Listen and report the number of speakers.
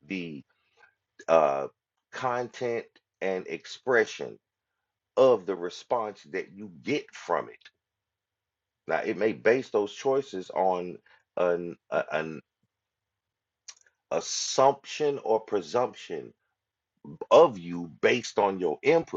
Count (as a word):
one